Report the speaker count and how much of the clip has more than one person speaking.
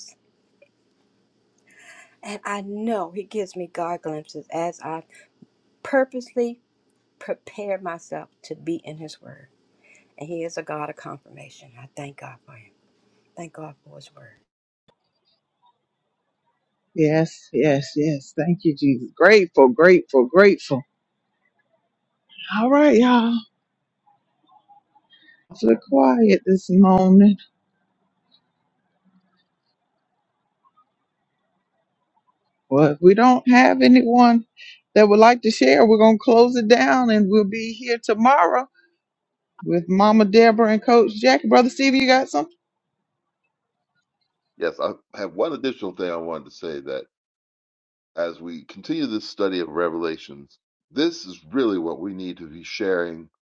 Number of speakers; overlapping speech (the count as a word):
three, no overlap